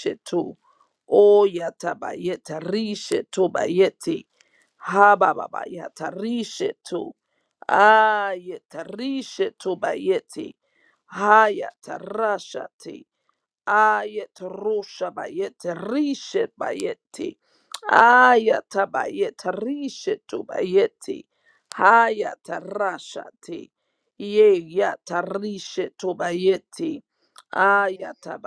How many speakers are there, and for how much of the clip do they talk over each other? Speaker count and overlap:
1, no overlap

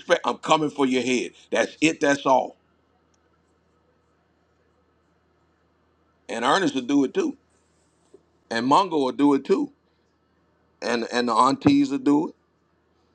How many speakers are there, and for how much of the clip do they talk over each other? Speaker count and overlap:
1, no overlap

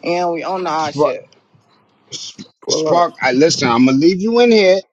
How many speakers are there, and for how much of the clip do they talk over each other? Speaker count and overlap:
2, about 15%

